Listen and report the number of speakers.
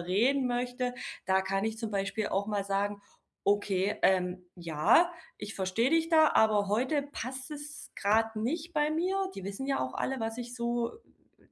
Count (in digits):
1